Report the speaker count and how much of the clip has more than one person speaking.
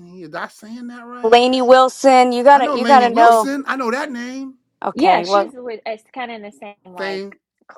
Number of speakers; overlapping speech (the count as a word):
three, about 25%